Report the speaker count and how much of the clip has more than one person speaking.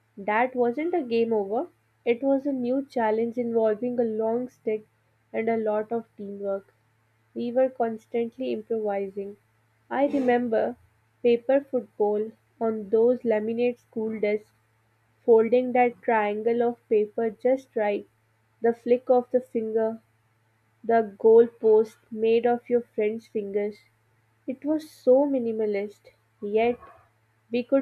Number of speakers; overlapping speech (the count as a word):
one, no overlap